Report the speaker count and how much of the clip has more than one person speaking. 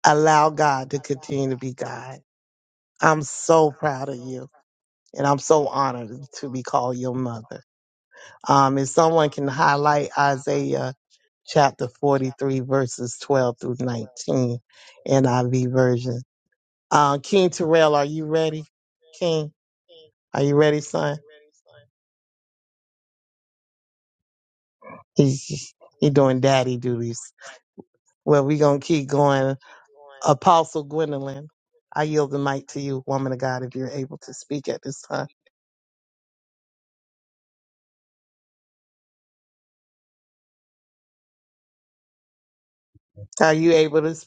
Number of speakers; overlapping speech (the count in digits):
1, no overlap